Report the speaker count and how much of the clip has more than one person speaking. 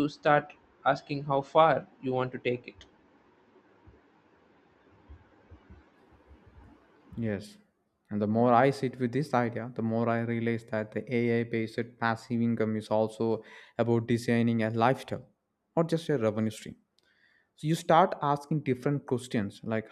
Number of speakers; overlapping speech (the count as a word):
two, no overlap